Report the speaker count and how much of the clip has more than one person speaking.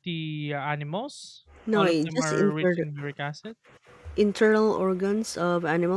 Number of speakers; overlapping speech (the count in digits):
2, about 18%